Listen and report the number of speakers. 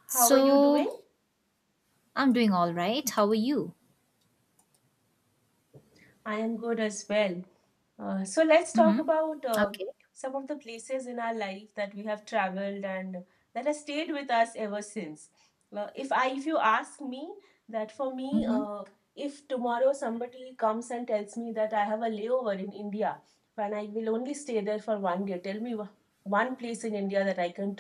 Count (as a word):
two